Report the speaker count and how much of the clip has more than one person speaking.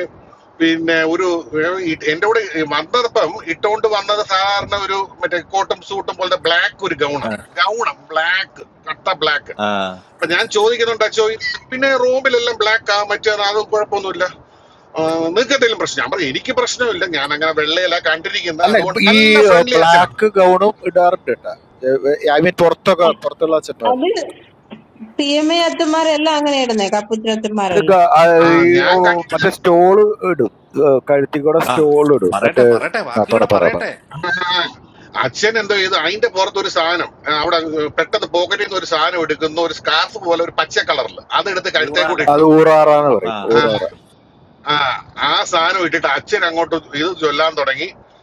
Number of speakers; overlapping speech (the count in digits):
4, about 10%